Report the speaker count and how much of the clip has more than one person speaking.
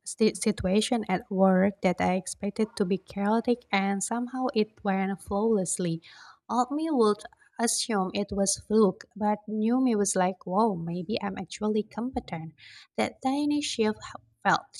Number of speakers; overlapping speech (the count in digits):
1, no overlap